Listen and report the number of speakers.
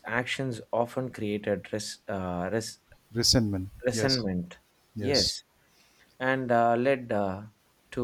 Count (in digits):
2